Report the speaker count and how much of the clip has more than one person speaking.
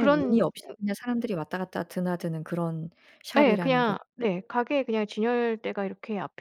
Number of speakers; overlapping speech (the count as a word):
two, about 17%